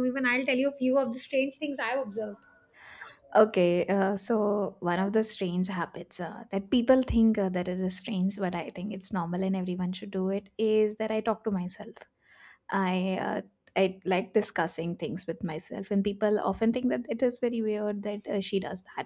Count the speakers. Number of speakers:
2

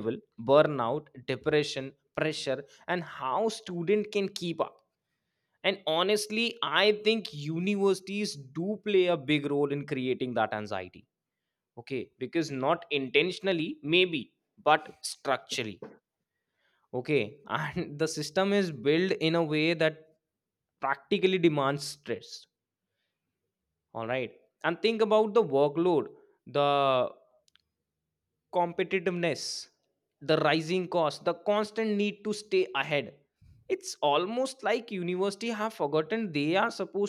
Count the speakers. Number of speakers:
1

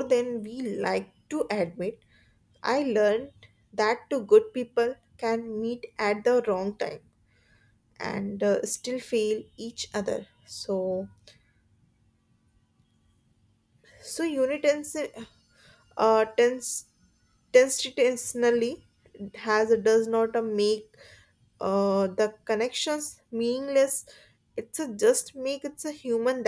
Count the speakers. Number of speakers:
1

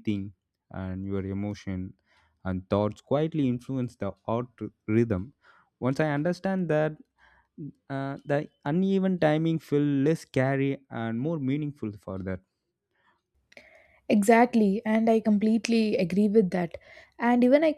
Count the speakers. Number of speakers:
2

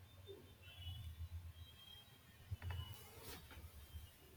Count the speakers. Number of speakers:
0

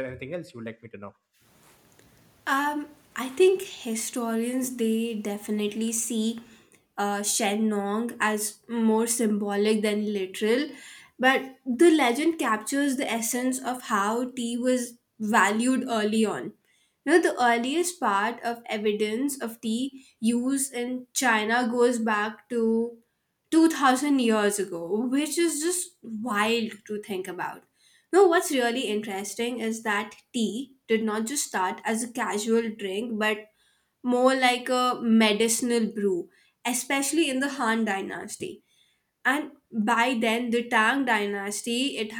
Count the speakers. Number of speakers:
2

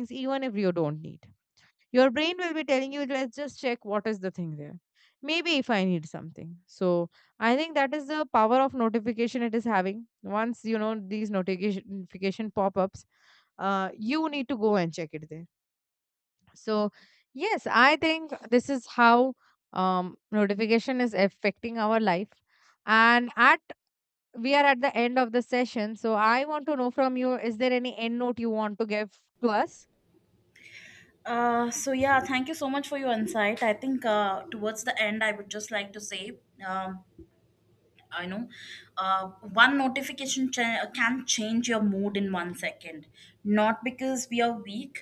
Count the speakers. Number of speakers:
2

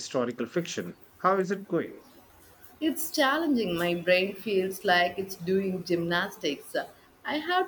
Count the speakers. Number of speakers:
2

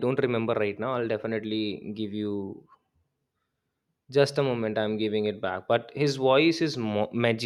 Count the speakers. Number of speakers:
1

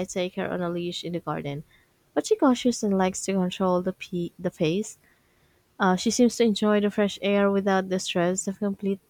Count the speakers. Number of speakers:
1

